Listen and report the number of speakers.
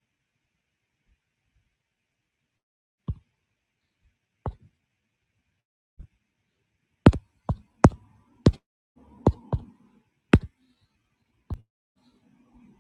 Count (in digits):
0